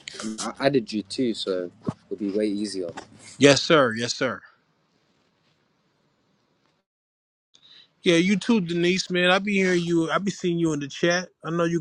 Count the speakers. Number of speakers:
2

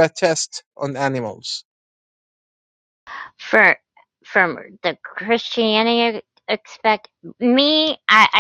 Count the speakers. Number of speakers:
2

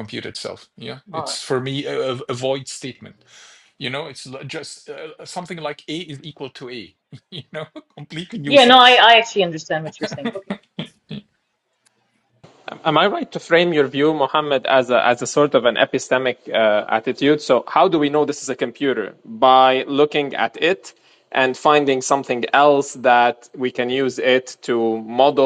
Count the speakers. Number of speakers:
3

